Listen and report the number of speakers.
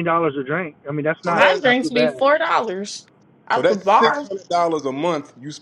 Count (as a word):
three